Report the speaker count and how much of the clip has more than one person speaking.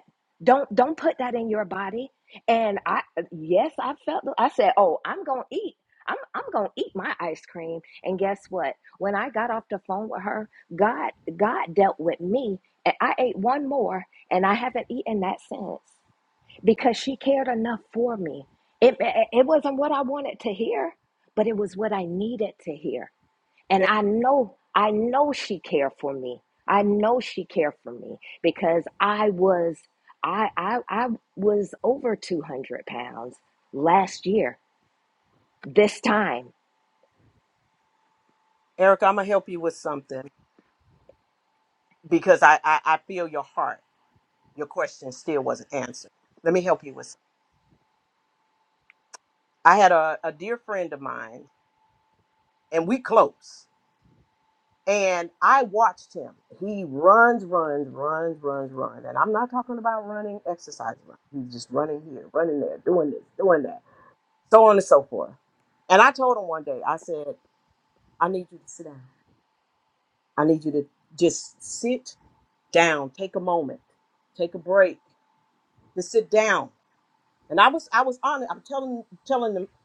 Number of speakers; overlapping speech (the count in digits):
2, under 1%